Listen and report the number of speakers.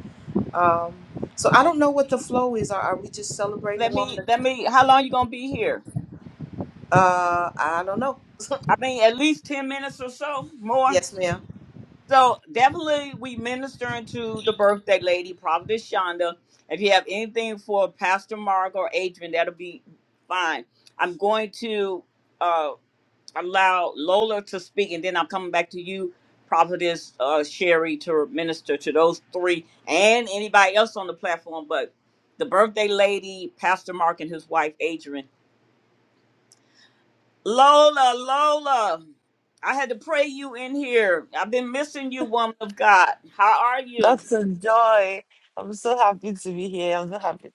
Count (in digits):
3